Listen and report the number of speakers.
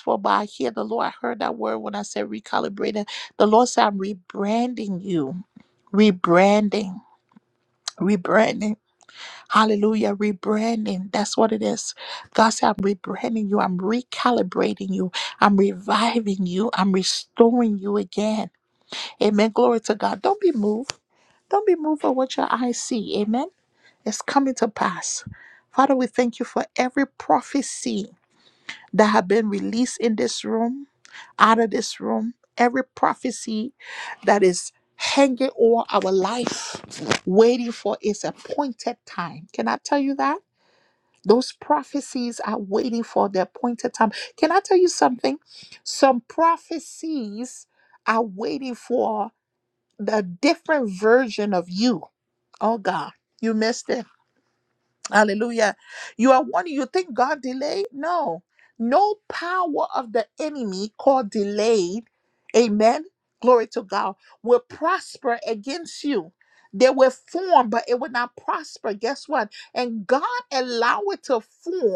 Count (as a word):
one